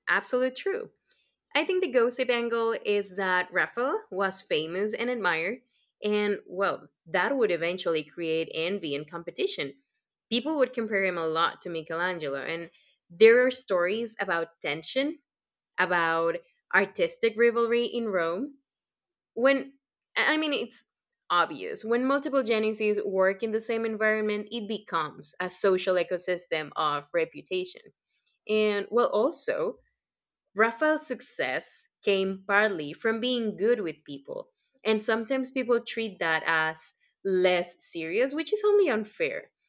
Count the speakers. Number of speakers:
one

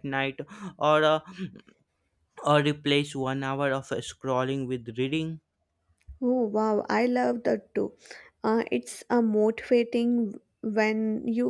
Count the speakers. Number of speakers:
two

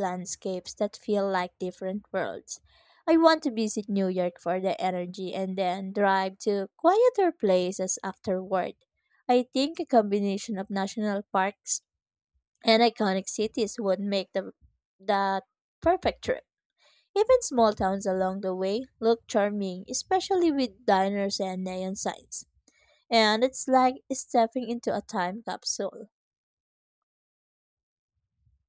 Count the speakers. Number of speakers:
one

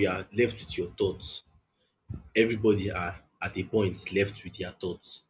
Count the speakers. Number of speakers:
one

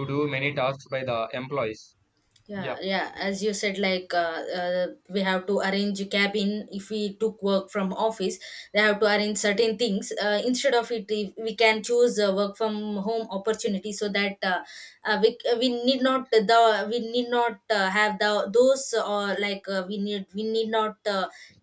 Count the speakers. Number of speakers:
two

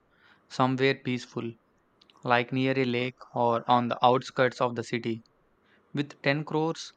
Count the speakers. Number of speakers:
one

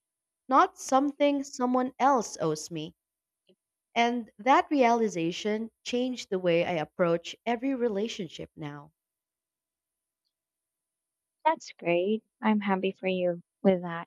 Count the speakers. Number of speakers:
two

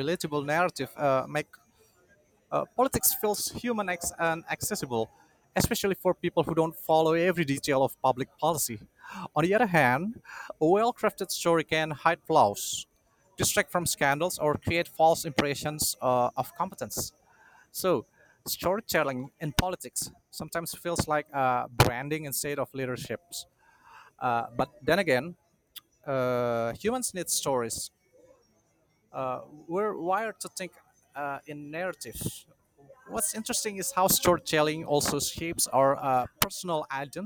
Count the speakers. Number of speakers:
one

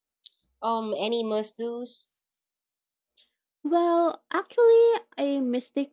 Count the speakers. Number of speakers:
two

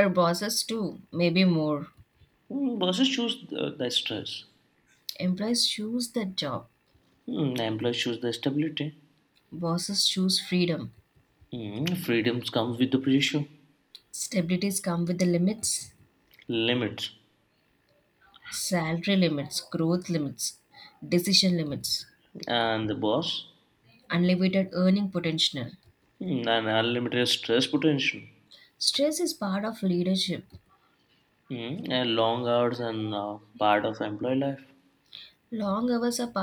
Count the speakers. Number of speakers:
two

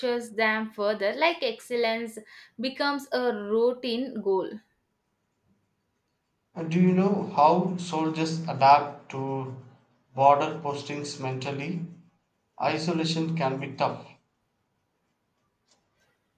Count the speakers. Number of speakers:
two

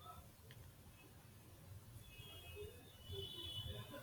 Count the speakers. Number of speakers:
zero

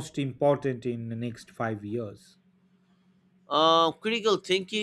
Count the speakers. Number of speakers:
two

